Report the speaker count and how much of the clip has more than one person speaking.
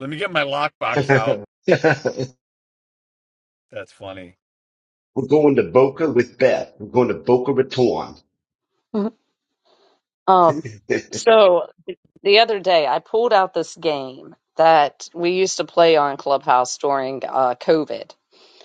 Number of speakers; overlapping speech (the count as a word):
three, about 2%